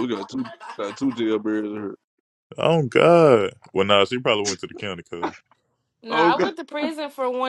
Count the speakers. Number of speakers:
3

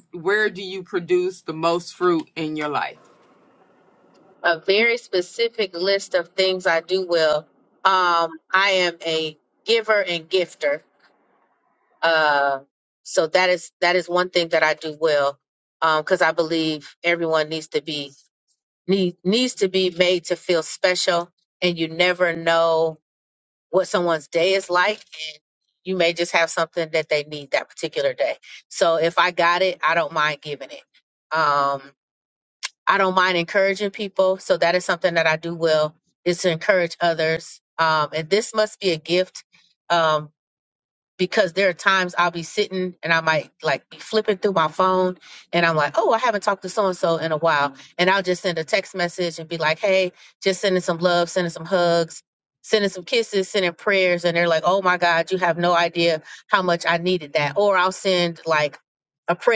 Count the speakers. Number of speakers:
2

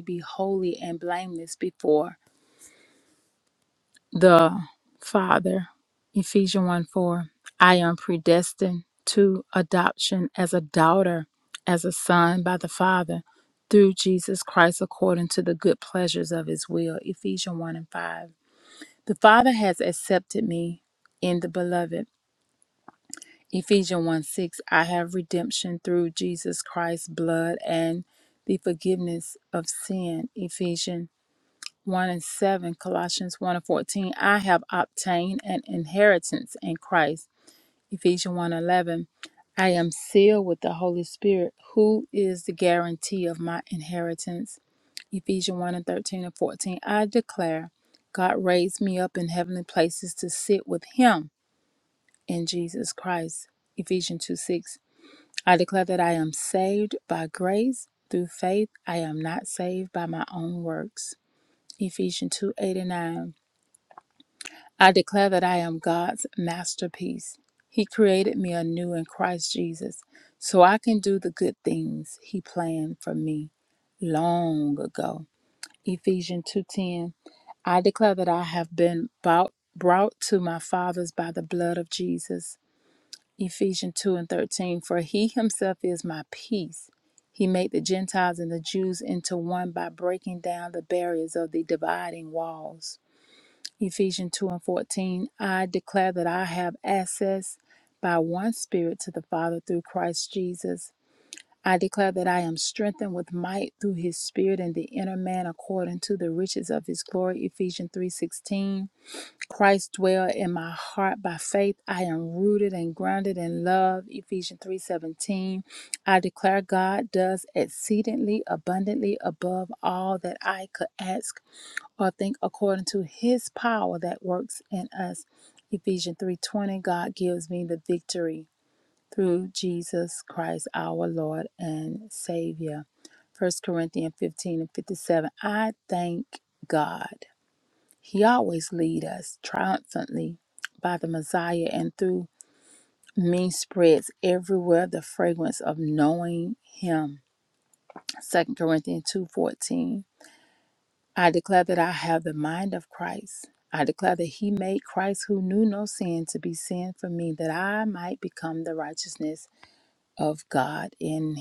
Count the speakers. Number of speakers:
1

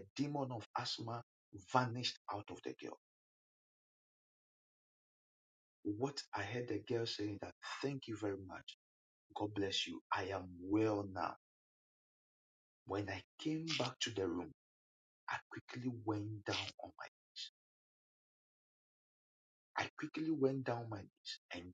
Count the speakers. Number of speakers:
1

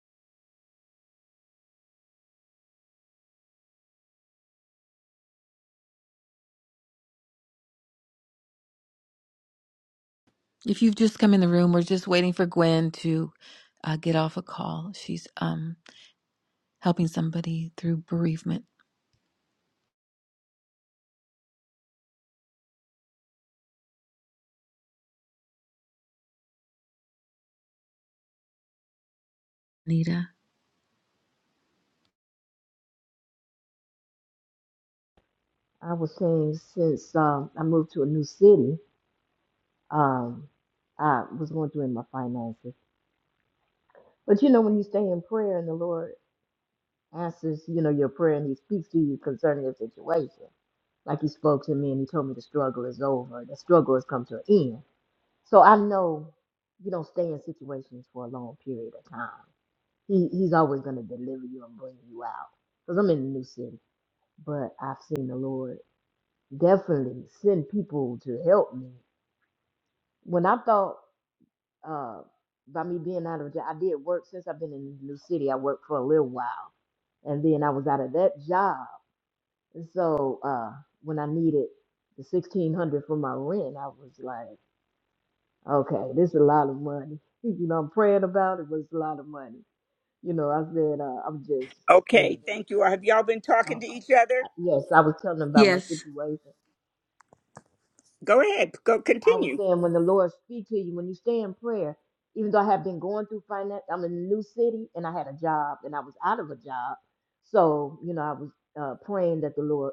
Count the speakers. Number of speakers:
3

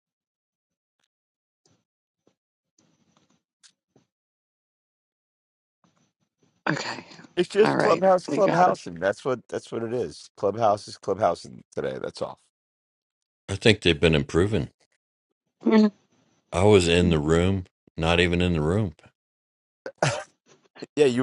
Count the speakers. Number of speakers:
3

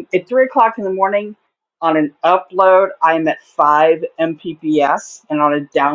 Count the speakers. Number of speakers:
1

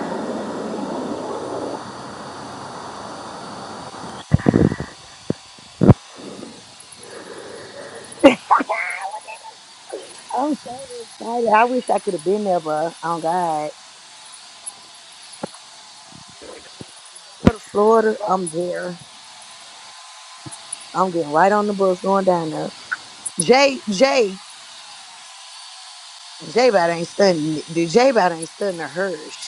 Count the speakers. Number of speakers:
1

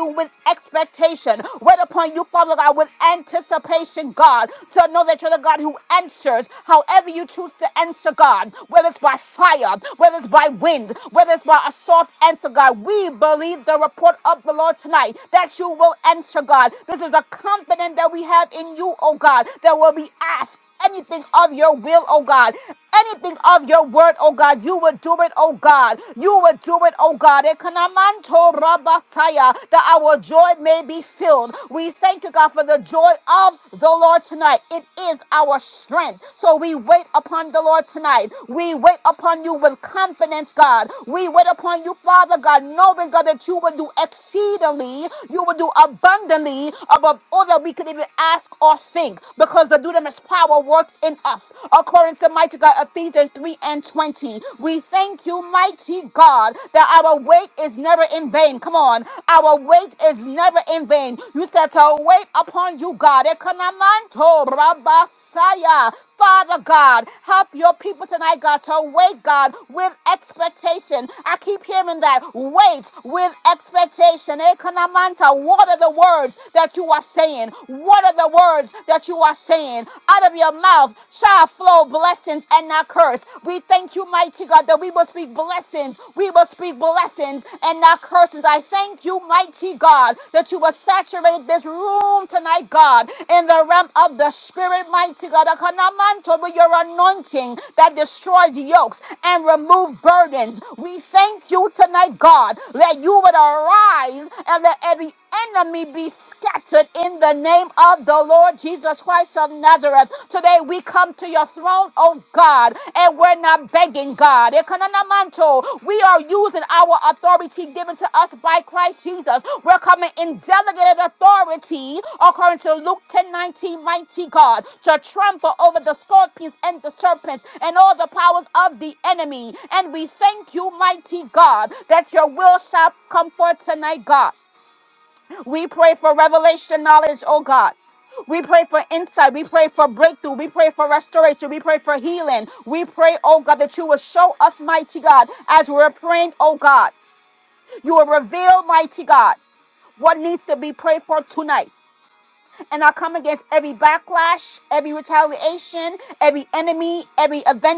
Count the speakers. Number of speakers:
1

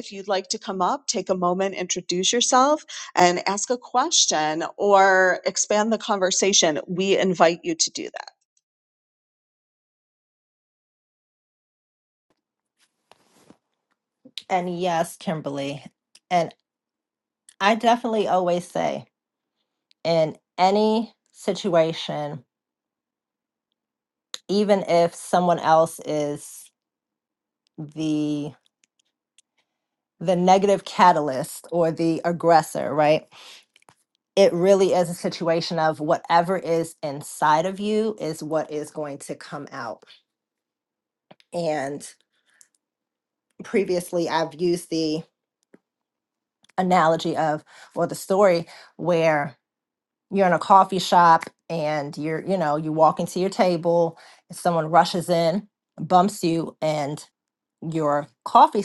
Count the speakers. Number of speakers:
2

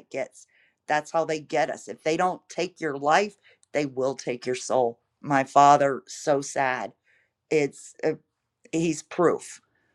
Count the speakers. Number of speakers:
1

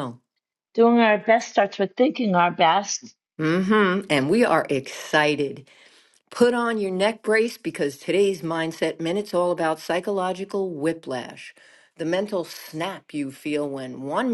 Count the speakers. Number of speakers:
2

